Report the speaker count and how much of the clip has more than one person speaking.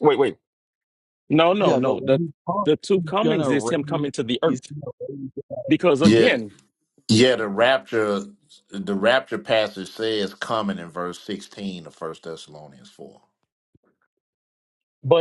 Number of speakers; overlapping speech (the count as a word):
three, about 12%